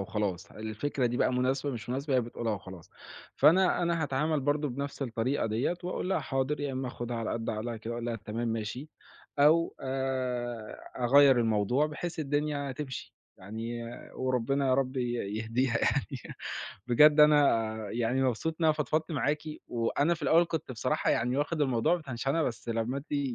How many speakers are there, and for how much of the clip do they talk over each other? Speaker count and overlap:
1, no overlap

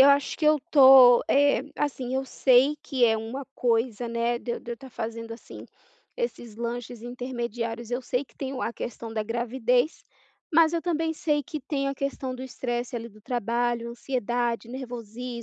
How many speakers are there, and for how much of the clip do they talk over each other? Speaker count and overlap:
1, no overlap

